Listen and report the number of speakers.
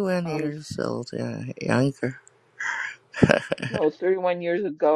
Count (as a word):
two